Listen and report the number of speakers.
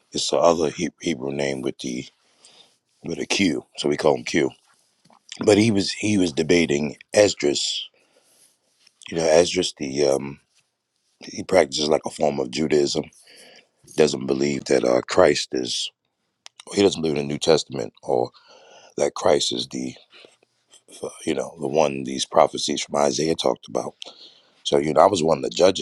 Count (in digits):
1